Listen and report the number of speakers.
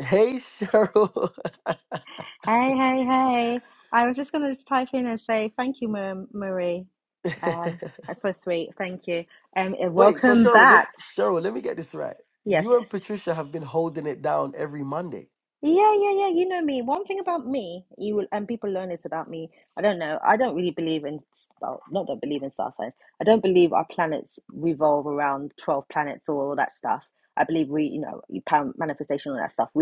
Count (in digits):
2